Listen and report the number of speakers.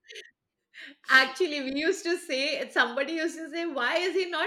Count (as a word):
one